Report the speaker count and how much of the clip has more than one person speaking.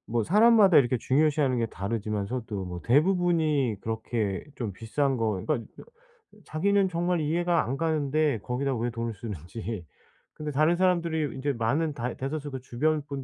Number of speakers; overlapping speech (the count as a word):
one, no overlap